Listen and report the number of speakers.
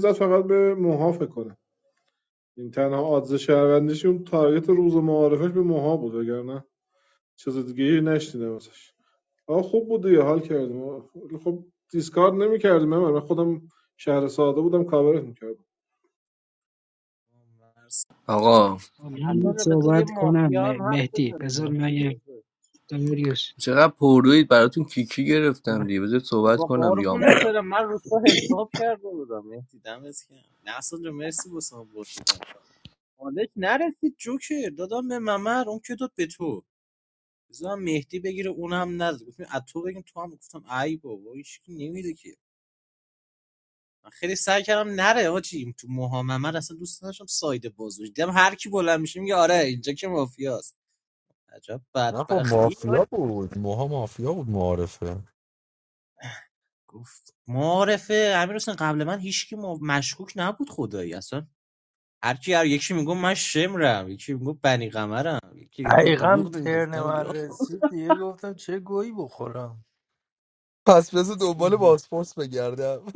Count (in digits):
6